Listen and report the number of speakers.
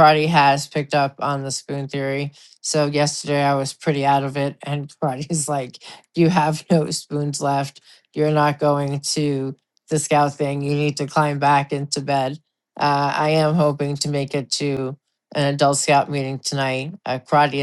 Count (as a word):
one